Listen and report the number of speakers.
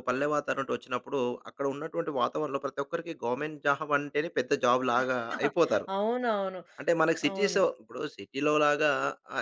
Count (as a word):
two